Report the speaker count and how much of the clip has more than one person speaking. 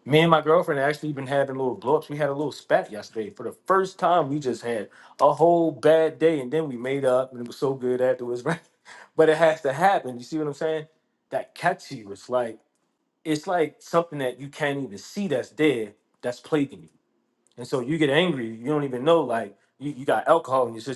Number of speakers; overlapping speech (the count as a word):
one, no overlap